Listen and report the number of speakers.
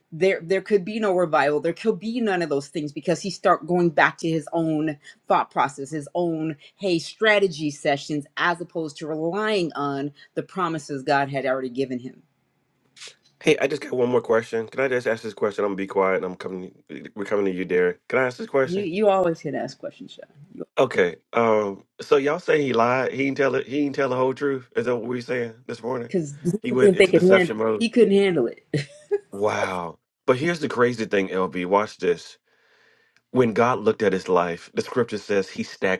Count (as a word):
two